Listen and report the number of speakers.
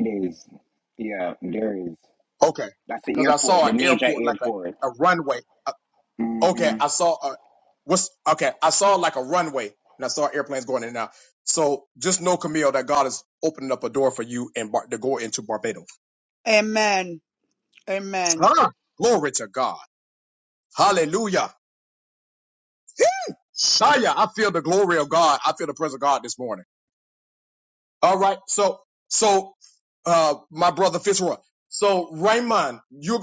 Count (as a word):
three